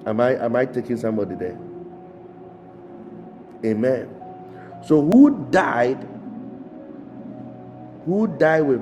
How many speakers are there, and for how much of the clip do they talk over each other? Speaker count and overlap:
one, no overlap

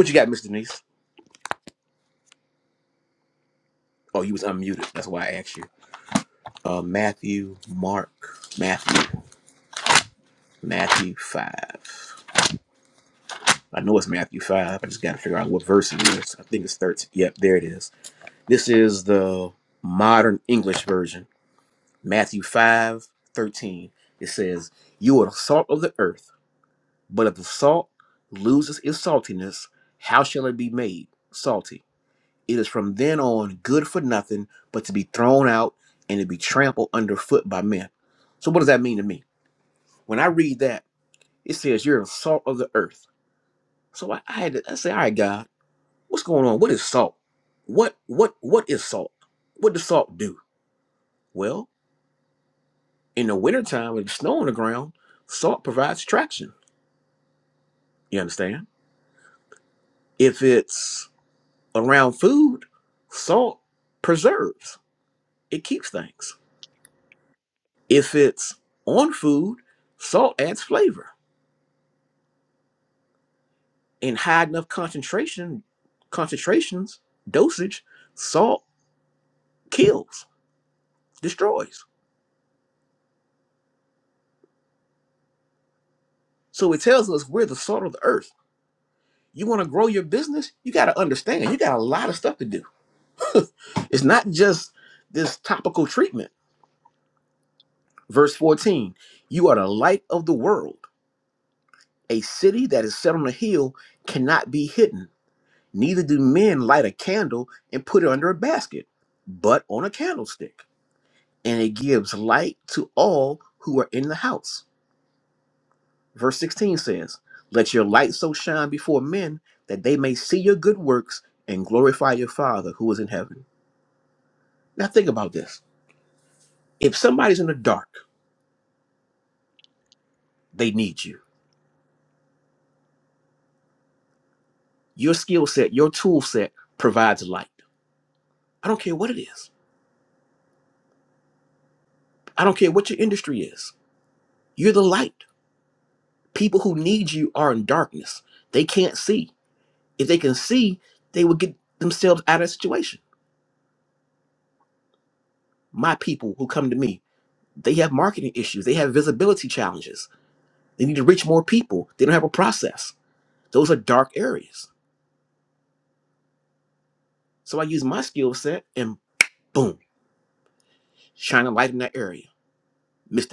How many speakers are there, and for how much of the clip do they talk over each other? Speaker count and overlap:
one, no overlap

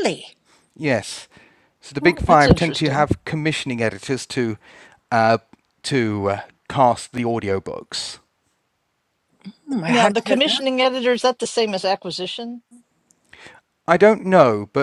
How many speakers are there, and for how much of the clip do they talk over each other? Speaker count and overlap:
three, about 12%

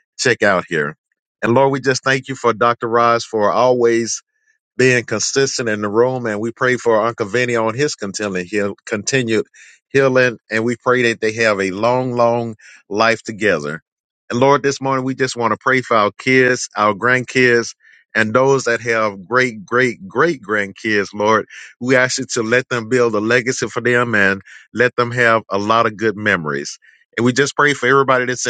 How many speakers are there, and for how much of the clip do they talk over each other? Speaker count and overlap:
one, no overlap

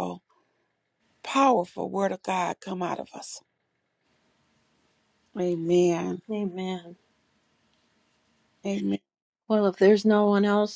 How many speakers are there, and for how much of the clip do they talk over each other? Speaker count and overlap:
two, no overlap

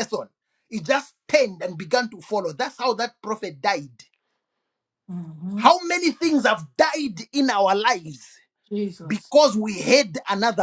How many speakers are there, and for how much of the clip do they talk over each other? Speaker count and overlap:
two, about 2%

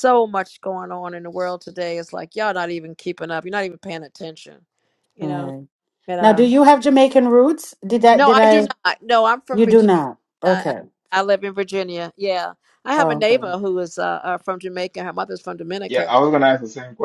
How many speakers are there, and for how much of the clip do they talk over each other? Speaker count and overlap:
three, about 15%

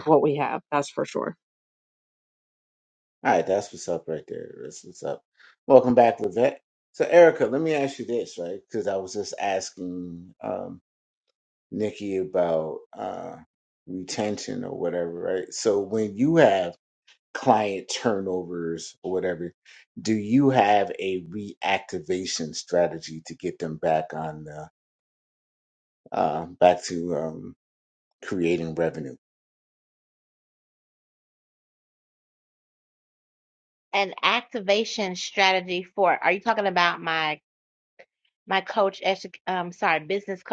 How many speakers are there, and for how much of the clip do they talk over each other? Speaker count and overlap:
three, no overlap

